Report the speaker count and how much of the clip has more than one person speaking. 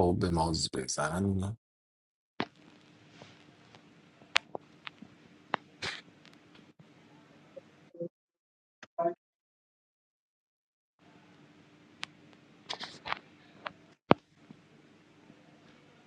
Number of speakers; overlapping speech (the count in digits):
1, no overlap